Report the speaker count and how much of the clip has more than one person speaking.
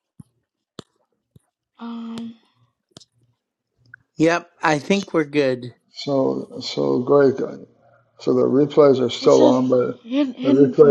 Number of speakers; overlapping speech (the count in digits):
3, about 8%